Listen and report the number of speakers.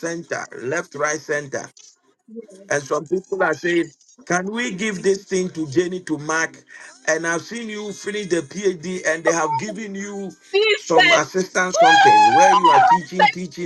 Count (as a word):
two